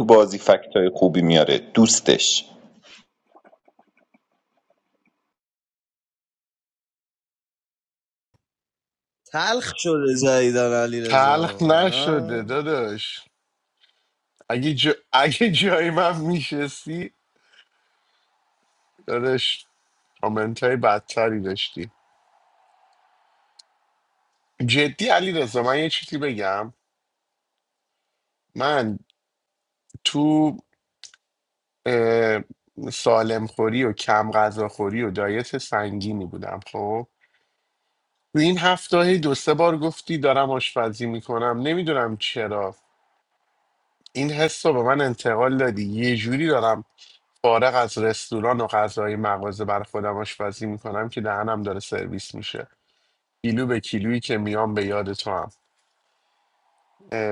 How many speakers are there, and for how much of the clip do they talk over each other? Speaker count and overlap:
3, about 2%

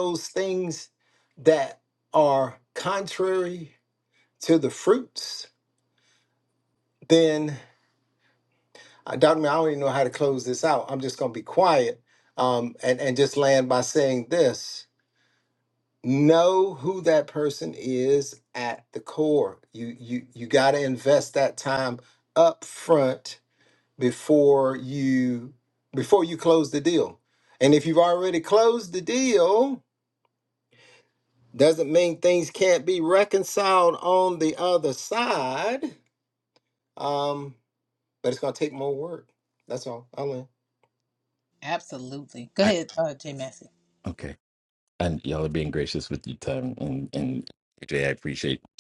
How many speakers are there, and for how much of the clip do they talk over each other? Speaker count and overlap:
3, under 1%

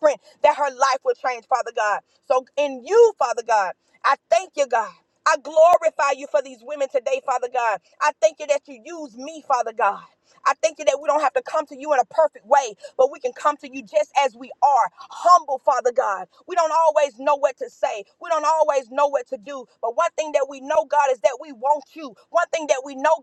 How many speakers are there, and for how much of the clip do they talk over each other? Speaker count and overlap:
1, no overlap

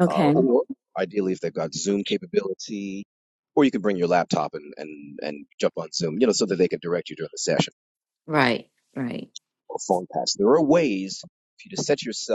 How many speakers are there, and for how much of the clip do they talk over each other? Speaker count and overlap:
2, about 3%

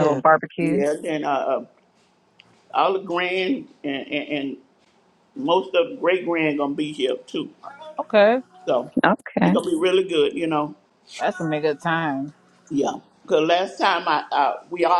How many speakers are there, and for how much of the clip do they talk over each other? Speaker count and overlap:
3, about 4%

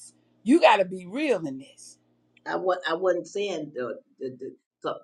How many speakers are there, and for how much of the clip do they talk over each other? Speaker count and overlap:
2, no overlap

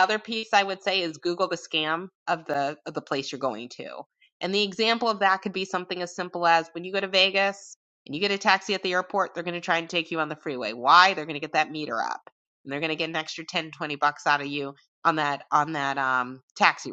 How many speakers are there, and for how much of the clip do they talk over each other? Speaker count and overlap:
1, no overlap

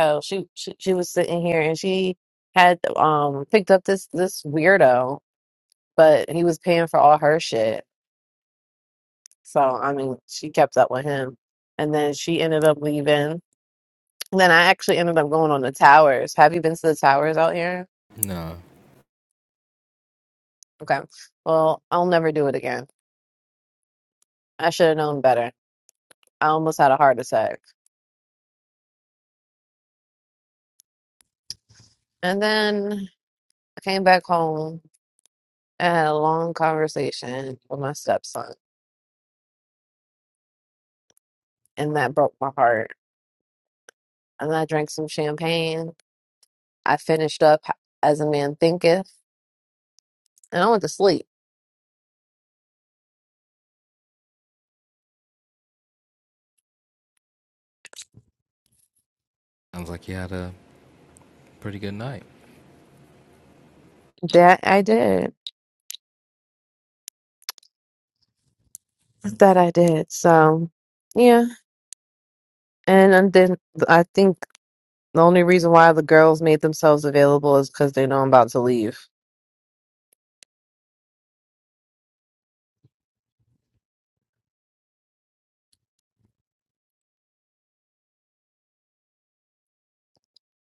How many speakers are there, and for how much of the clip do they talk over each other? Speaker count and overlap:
2, no overlap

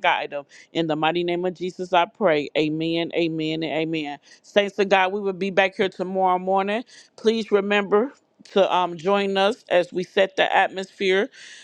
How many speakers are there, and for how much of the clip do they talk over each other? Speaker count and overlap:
1, no overlap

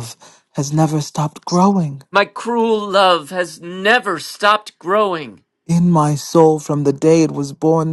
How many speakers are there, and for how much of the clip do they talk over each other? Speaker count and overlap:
2, no overlap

